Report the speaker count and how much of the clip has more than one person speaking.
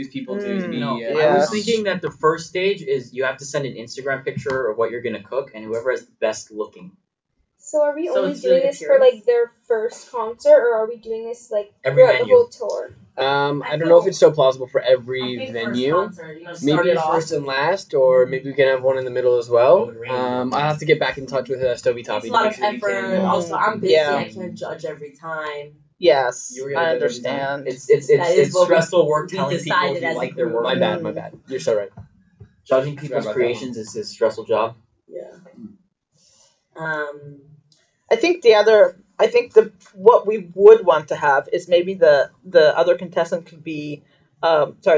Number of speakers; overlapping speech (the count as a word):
five, about 32%